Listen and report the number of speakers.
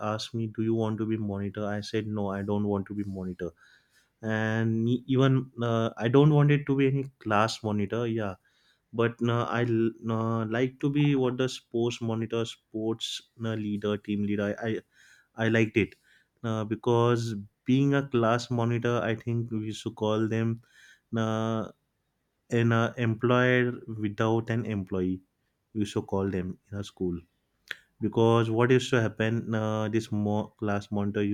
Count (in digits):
1